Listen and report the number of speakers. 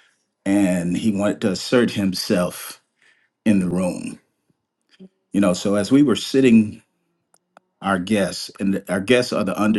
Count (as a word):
one